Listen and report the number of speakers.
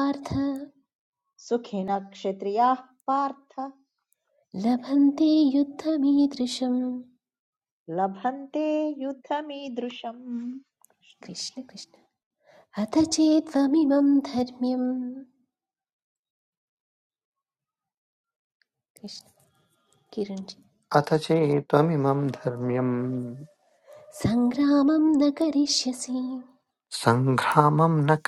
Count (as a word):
three